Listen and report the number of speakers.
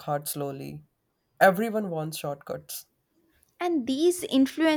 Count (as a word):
two